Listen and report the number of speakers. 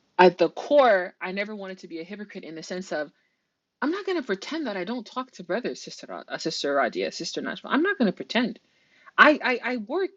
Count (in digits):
1